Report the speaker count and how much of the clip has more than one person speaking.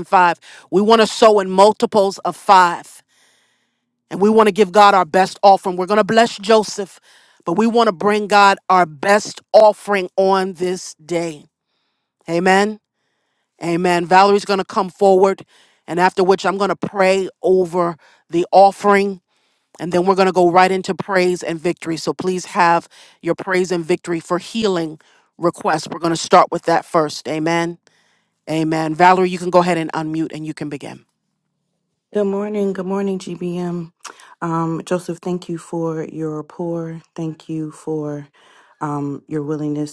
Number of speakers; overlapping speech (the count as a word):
two, no overlap